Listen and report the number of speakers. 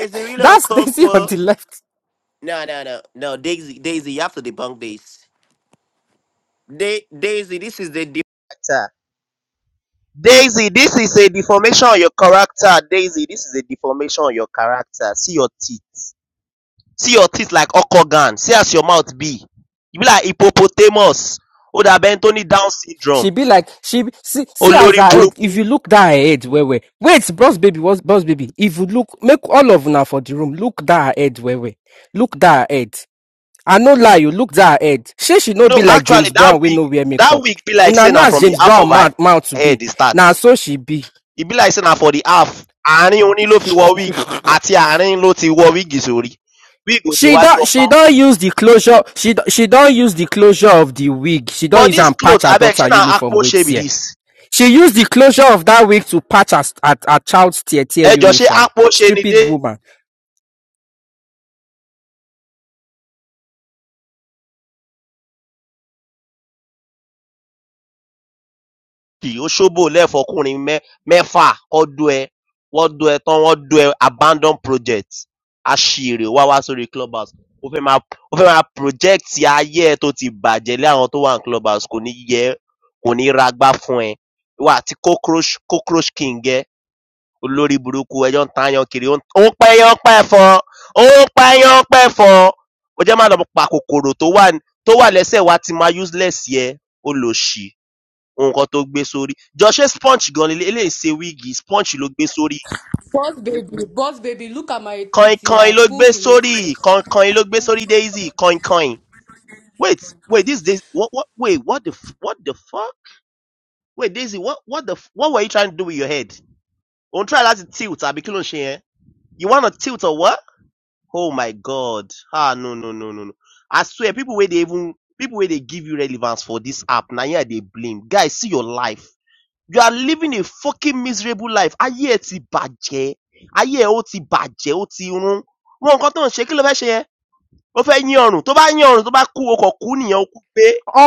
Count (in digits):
3